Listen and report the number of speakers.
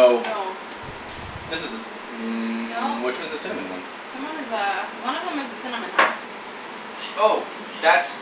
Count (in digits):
2